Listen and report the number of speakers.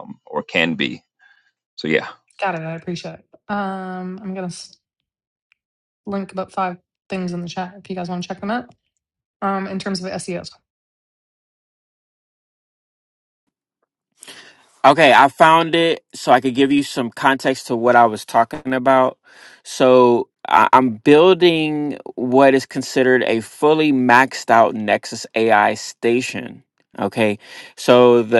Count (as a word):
three